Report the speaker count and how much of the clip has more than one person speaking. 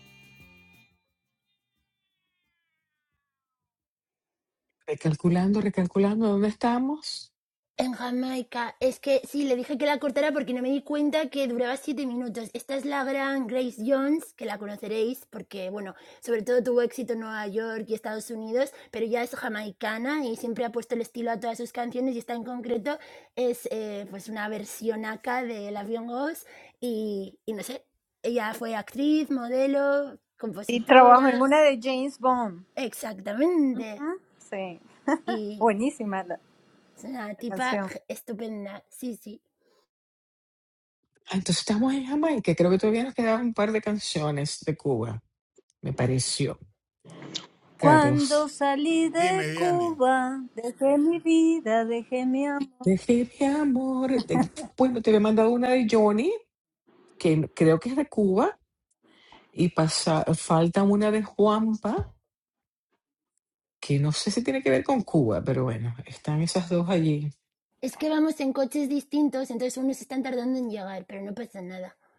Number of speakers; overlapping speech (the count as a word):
three, about 3%